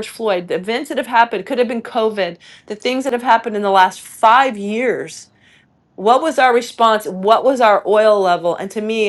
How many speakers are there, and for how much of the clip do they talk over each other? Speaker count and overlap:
1, no overlap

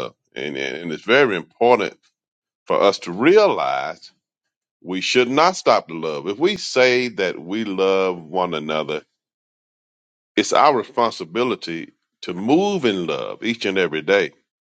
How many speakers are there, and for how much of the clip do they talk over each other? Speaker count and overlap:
1, no overlap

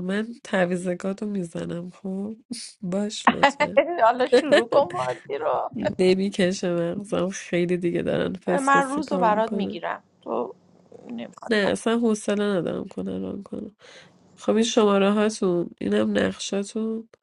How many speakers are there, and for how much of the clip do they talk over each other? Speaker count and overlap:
2, about 7%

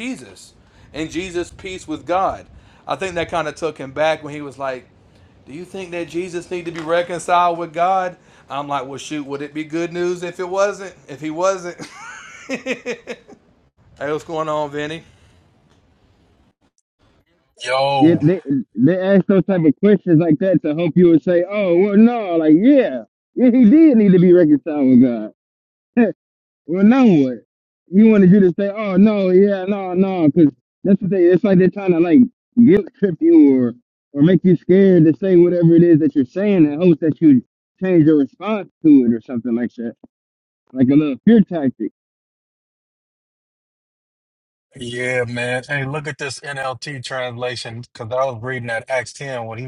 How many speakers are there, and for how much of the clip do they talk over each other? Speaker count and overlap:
3, under 1%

